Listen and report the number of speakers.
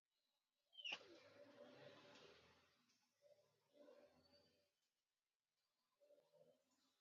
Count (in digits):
0